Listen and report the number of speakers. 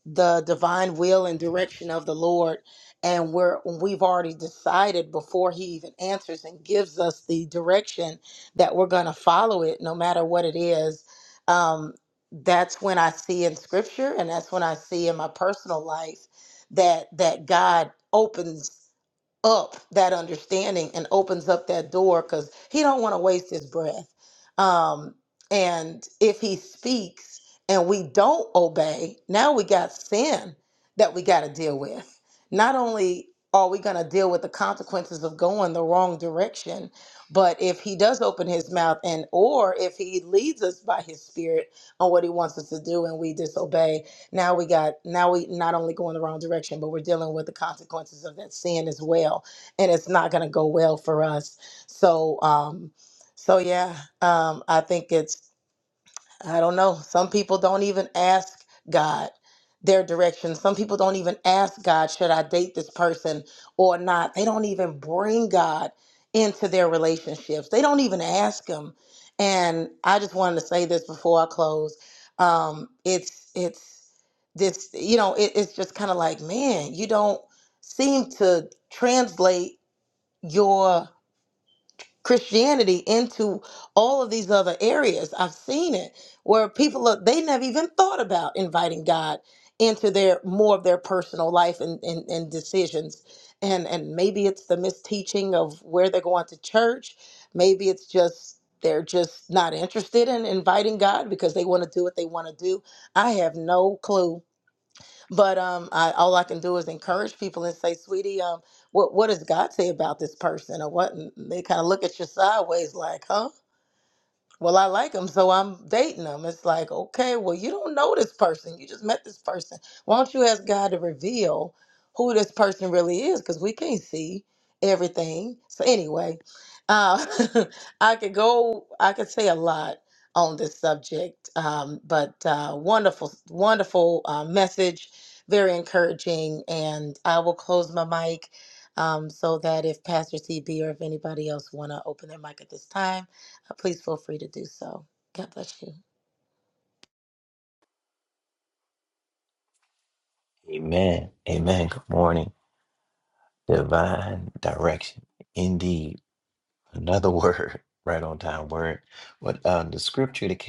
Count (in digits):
2